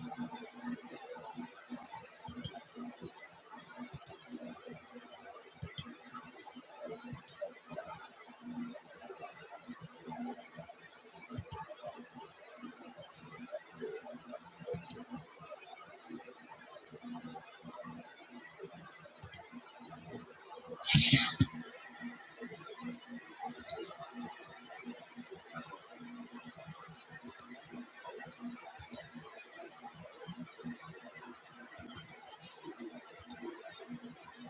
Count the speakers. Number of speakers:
0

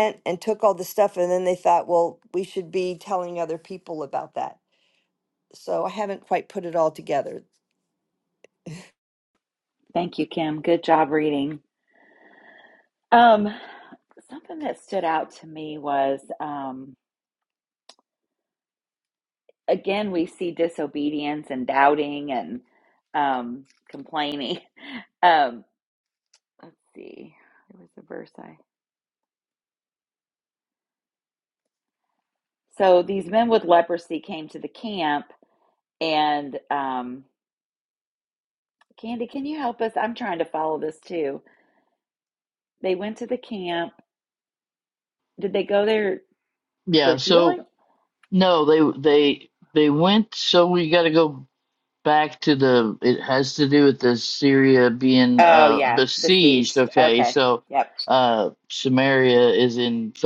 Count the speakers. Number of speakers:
3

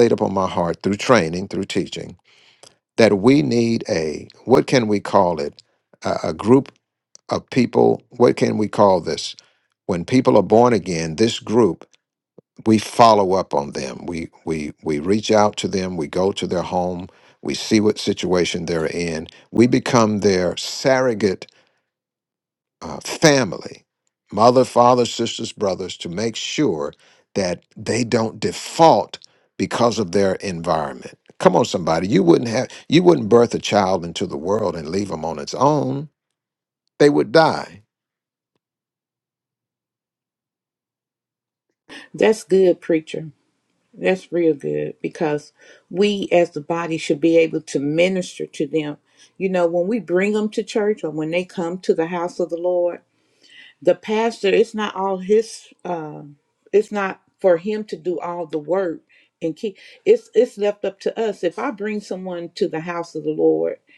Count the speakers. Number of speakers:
2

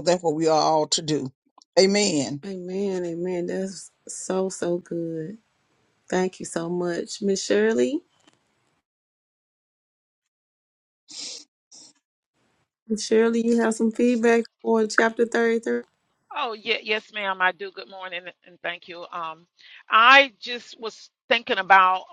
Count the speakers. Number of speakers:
3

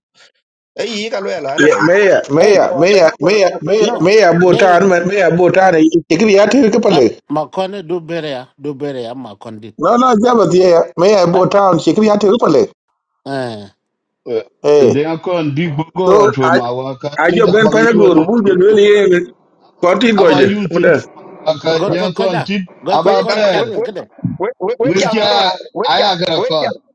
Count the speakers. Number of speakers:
4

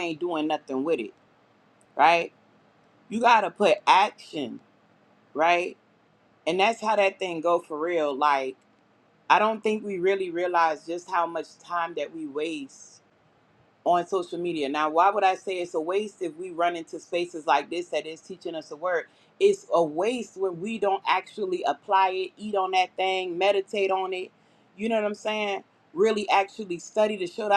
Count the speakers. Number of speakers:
1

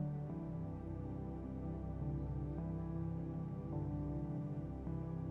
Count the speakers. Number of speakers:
0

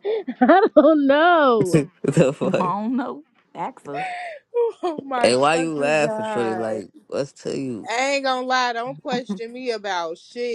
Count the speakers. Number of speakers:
4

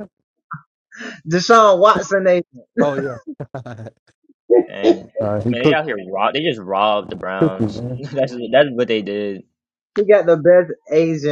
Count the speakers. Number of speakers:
3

